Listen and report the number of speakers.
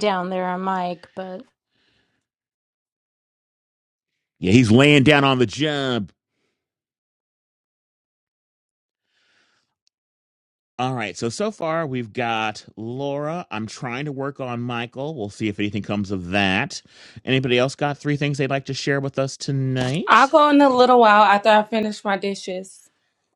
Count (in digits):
3